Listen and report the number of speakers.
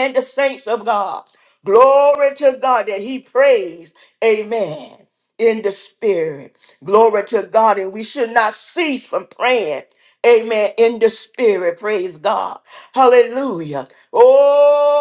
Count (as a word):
one